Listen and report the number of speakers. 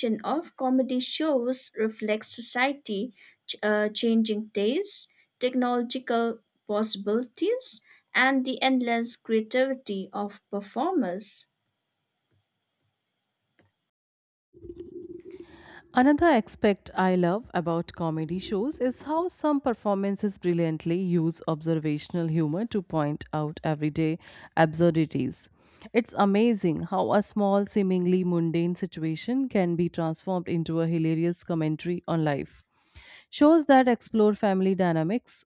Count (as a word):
two